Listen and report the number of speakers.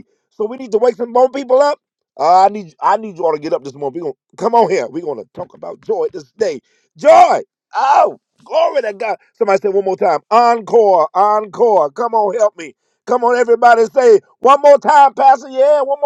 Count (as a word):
one